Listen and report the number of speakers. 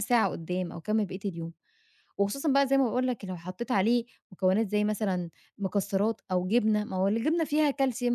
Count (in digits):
1